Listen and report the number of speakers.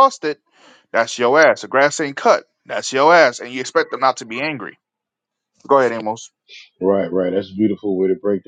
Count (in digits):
2